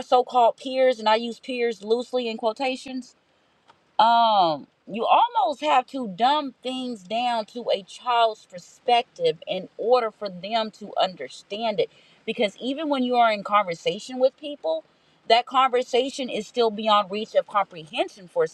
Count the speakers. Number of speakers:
one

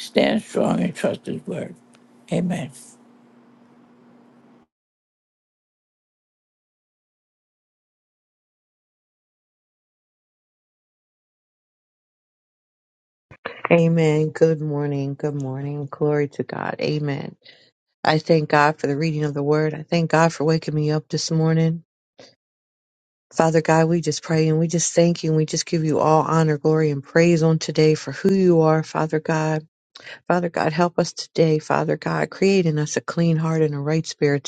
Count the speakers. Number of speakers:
two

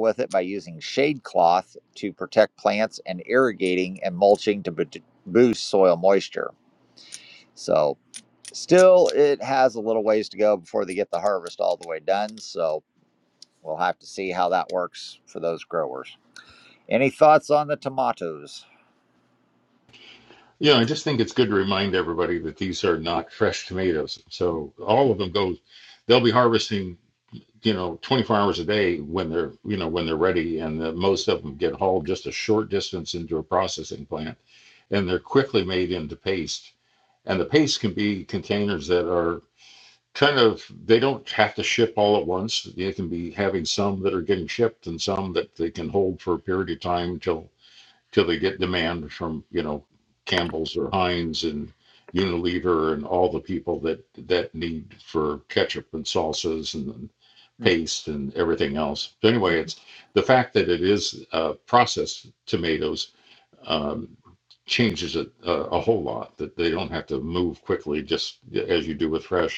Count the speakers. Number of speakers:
two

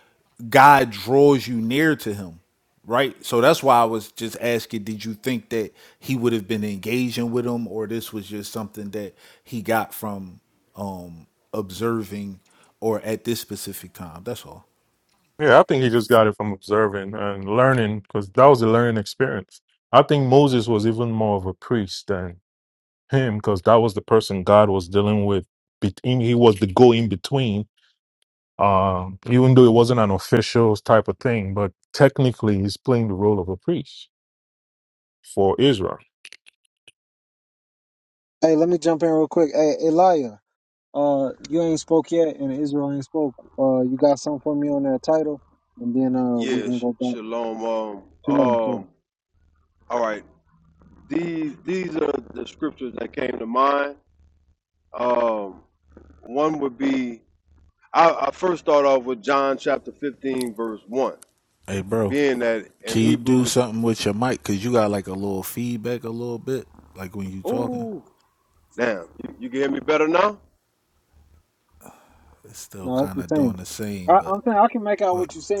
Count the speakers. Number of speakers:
four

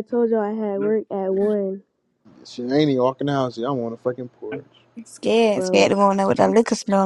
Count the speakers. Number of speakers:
three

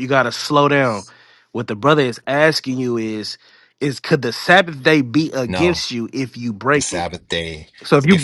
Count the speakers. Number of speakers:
two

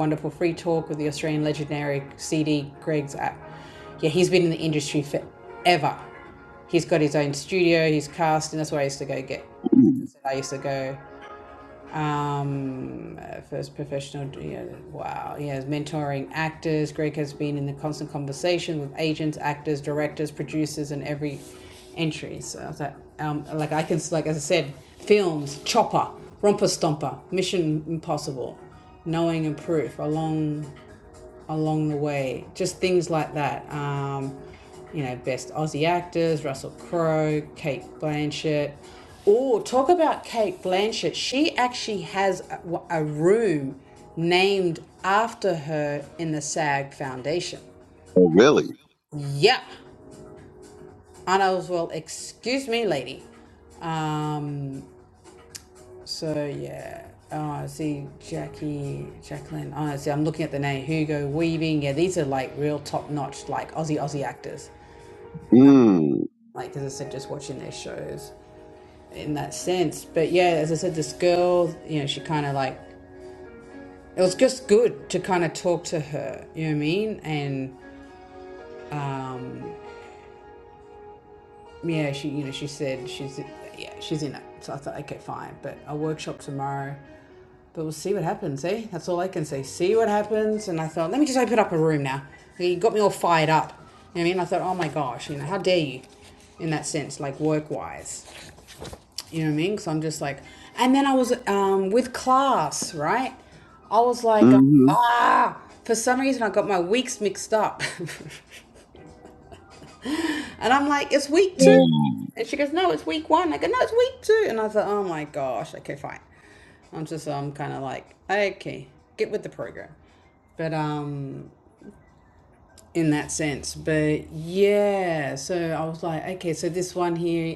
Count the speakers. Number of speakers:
two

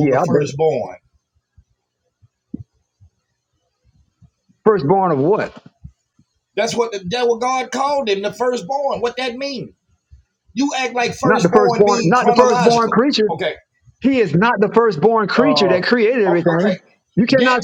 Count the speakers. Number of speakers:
two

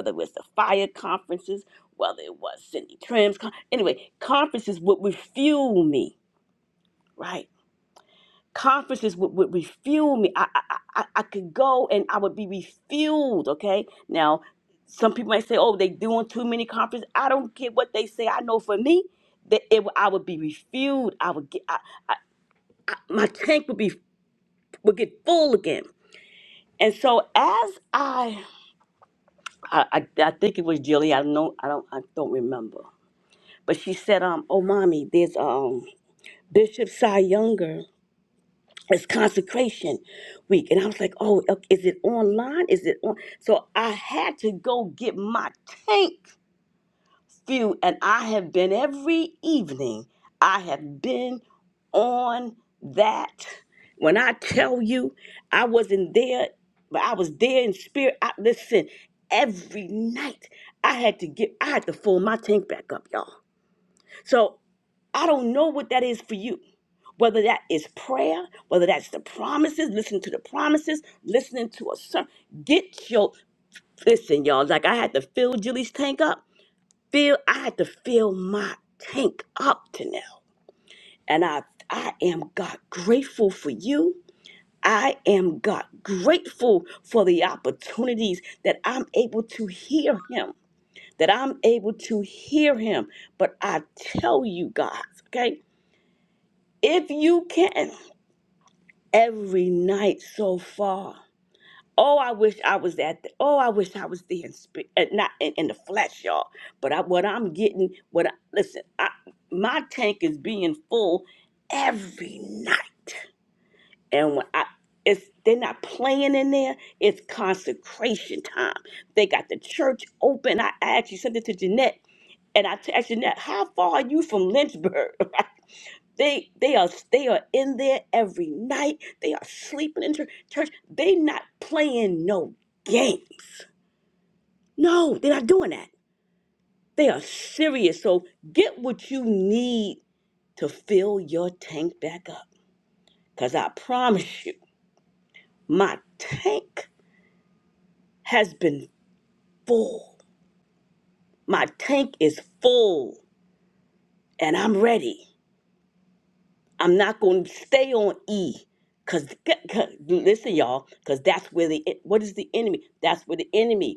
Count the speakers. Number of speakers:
one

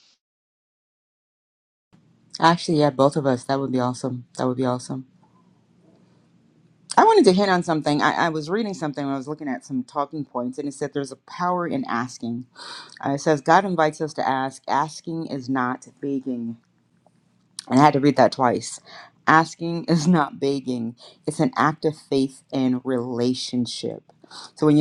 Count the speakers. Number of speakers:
one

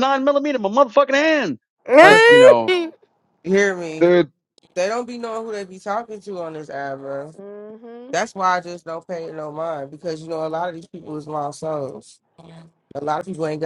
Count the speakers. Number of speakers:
three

